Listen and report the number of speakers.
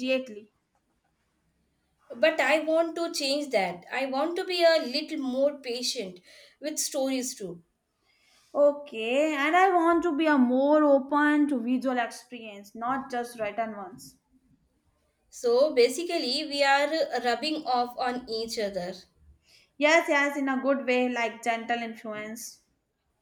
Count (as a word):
two